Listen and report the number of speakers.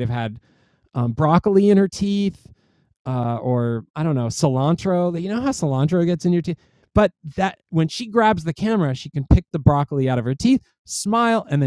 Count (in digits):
1